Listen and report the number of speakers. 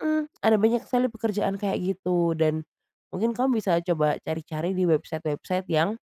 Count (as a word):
one